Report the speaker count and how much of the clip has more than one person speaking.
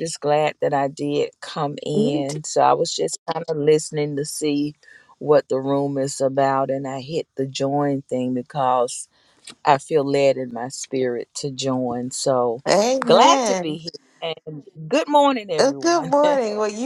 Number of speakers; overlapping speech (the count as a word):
two, about 10%